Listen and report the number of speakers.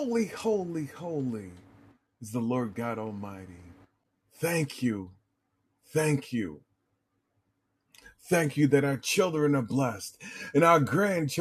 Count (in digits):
1